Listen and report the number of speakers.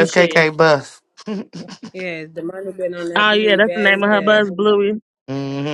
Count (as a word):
three